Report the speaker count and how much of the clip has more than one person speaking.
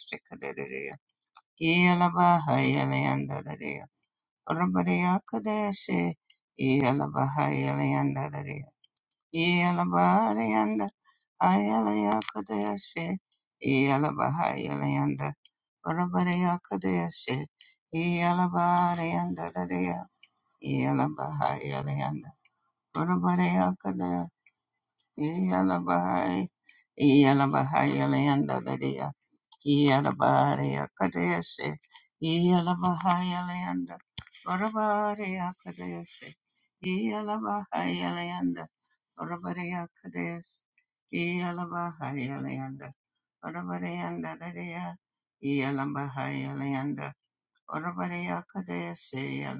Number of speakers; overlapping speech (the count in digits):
1, no overlap